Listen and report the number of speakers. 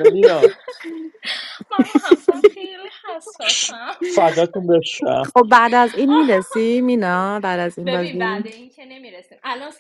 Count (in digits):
3